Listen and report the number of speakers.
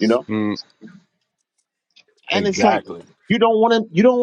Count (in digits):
2